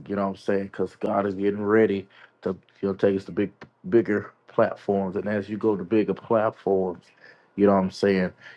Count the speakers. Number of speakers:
one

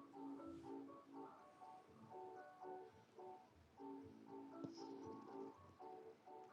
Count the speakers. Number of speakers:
zero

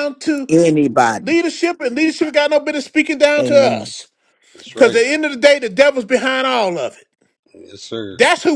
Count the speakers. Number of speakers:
three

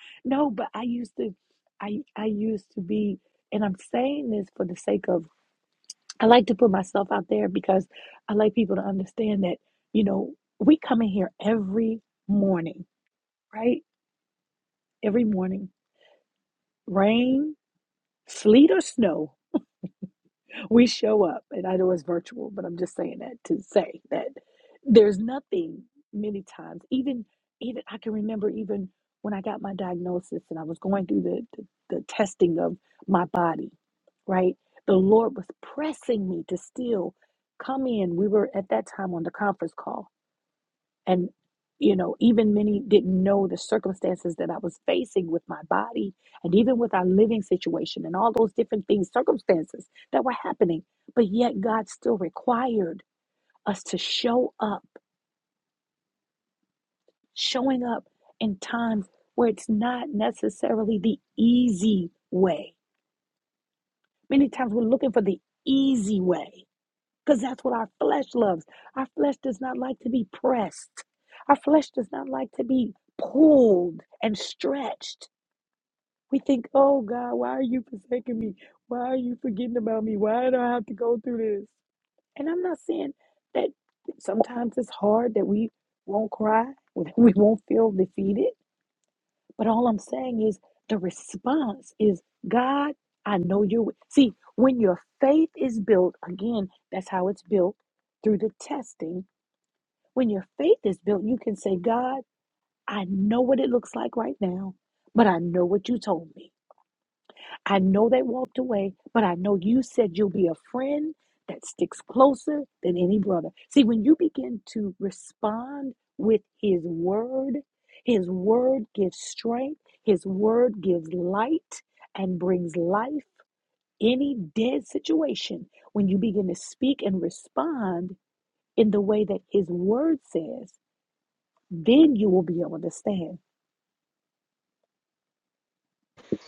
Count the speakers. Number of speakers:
one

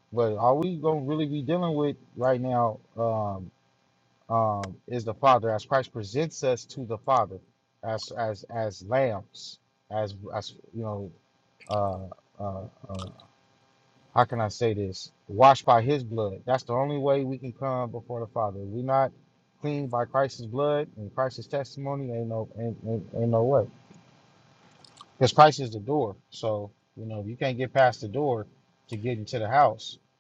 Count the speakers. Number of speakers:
one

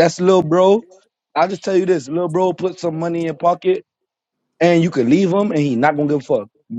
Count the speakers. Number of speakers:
one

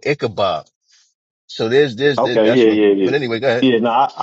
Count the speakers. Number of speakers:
two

